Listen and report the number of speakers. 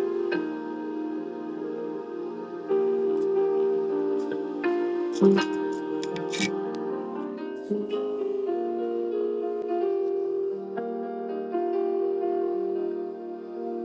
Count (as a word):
zero